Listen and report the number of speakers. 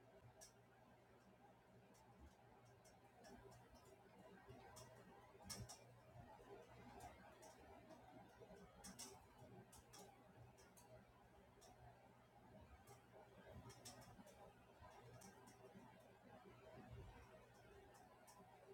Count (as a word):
zero